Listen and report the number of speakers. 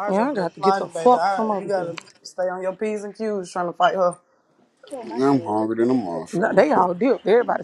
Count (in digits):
3